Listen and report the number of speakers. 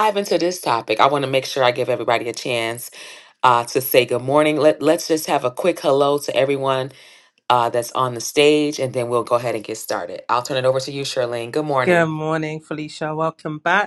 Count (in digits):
2